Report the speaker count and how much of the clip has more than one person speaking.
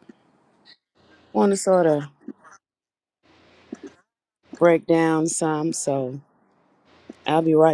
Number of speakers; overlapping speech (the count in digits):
1, no overlap